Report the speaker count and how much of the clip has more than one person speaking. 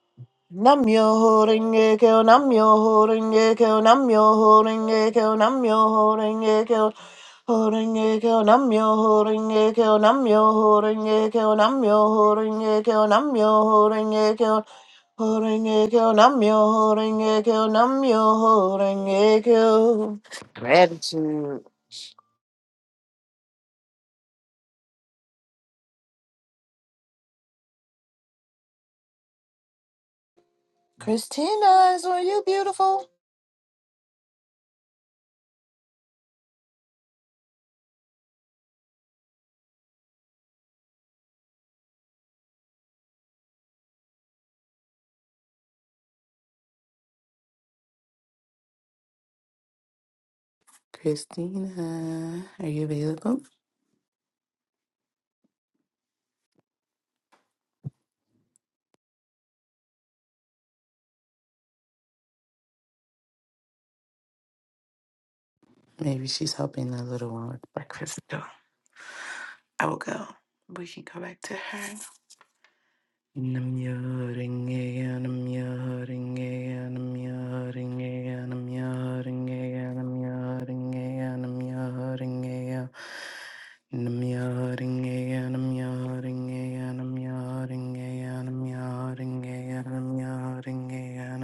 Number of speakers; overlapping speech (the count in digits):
2, no overlap